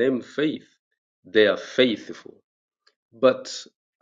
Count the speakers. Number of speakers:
1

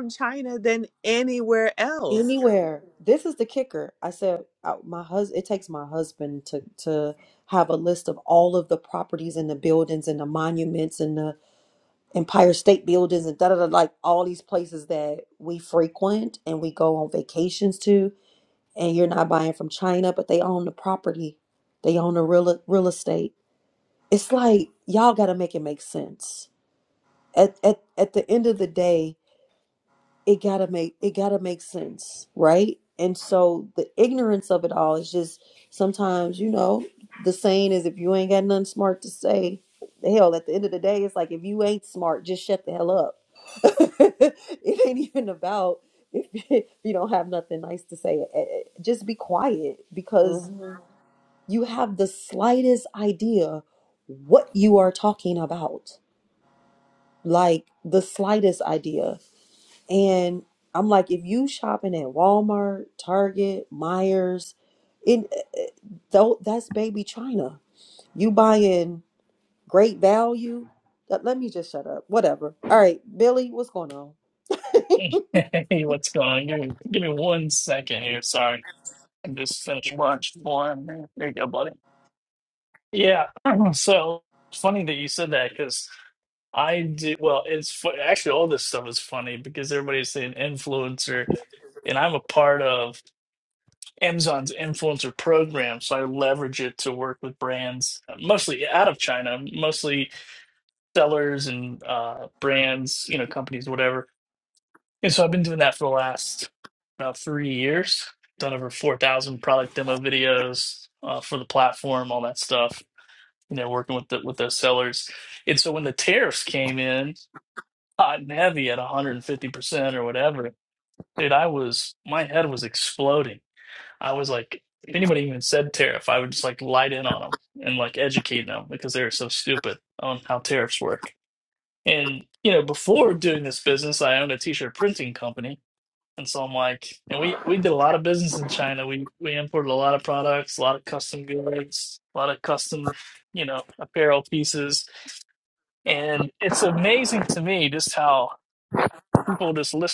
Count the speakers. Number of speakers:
3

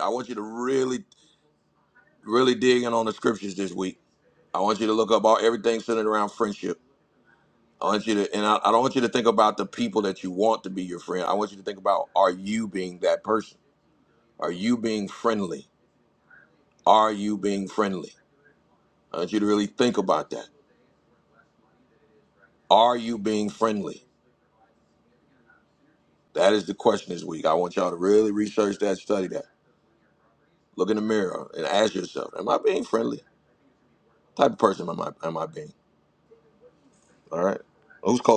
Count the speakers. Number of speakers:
1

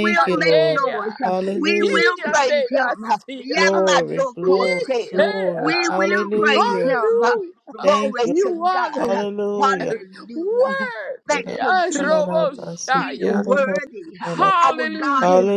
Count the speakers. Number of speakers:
3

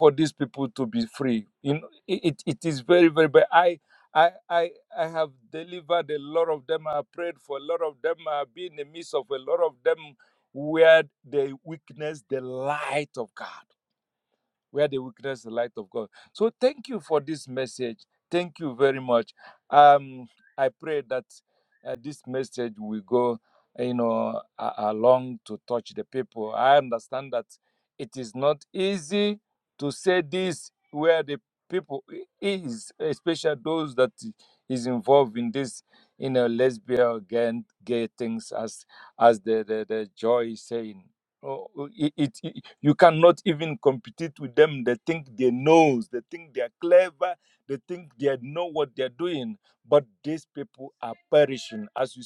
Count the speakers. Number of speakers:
1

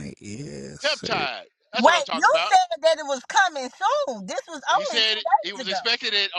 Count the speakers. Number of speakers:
3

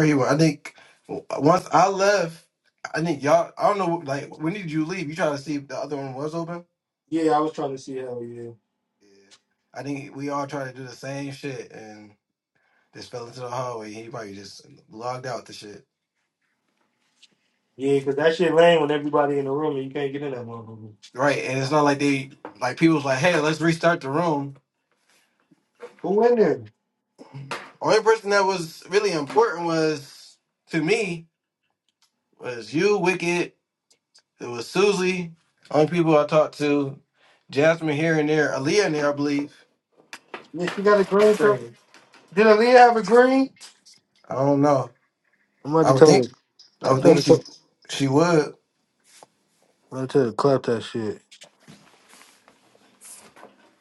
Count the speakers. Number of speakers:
2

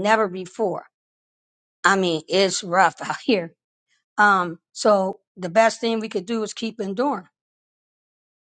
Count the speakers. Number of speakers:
1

